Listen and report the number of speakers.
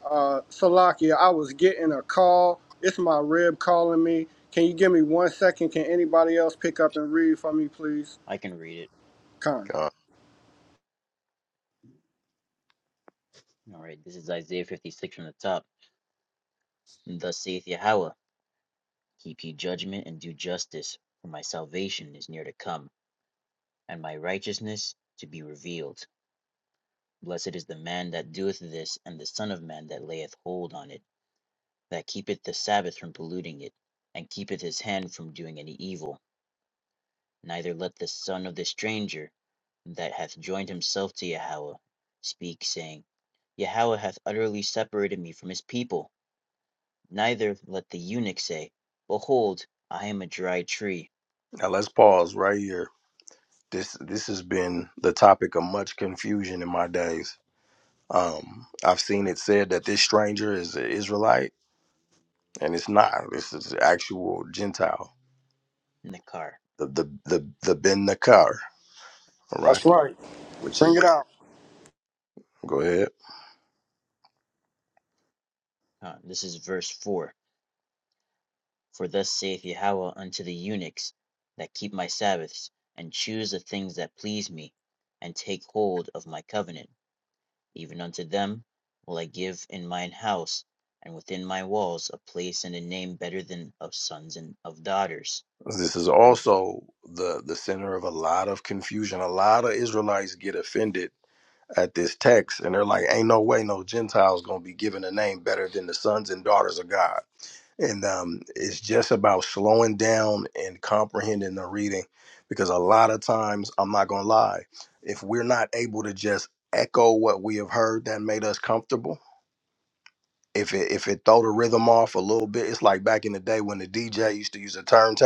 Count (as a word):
three